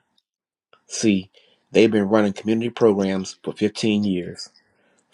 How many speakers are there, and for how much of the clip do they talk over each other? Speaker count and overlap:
one, no overlap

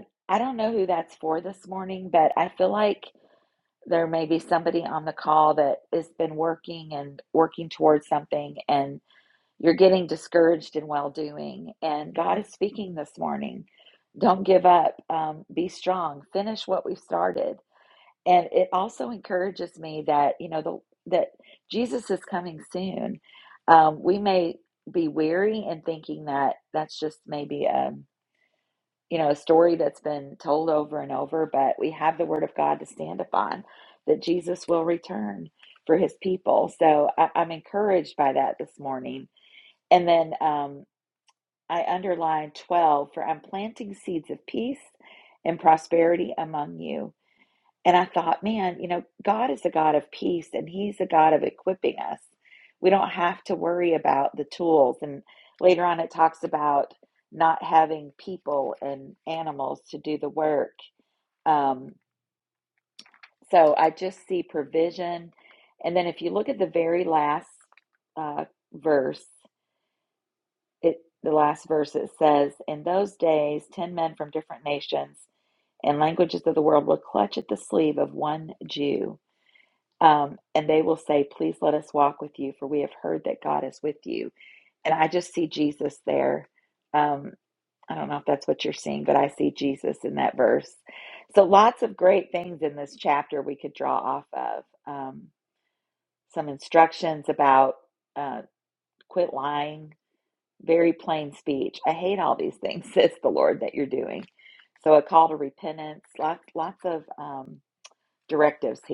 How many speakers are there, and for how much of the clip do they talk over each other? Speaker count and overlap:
one, no overlap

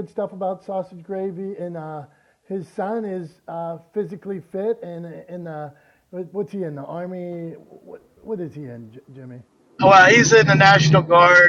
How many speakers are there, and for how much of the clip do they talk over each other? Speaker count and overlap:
two, no overlap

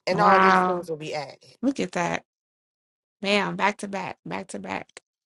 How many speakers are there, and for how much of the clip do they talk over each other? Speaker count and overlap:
two, about 14%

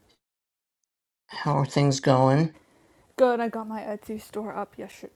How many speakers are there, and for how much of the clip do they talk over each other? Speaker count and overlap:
two, no overlap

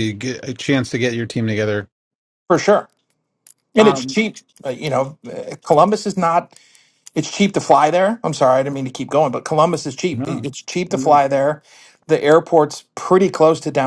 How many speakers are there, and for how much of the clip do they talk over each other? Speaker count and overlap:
two, about 7%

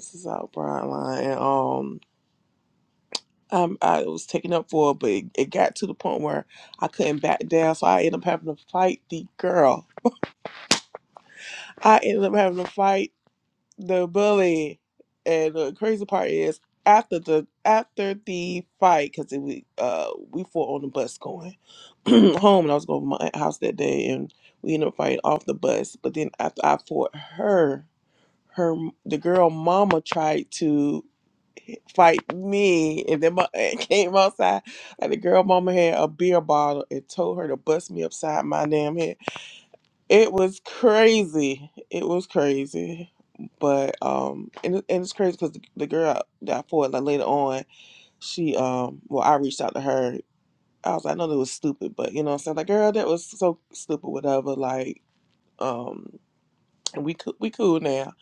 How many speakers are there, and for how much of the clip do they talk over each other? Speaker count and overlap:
one, no overlap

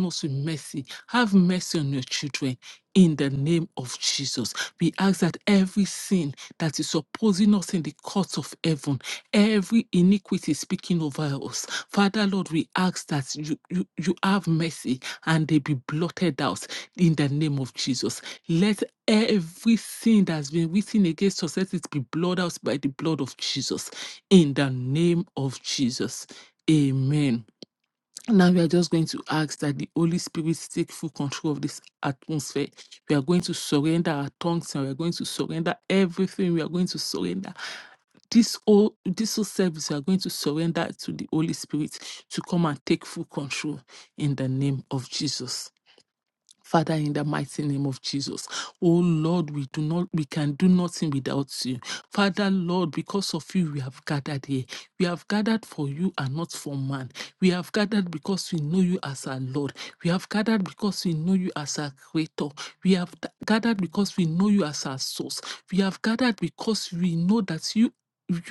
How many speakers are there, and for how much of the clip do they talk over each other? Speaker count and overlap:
one, no overlap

